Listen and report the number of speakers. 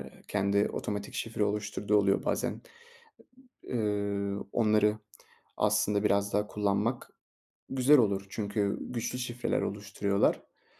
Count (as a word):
one